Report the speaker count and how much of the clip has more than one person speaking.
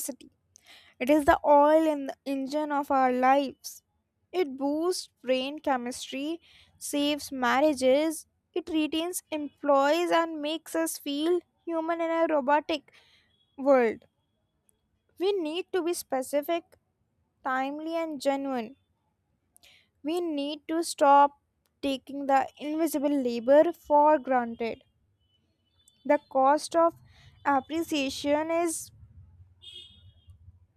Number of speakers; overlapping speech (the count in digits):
1, no overlap